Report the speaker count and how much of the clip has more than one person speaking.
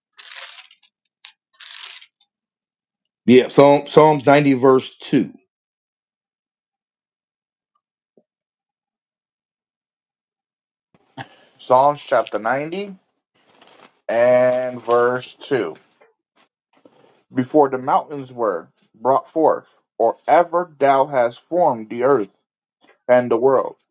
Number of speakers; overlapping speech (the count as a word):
two, no overlap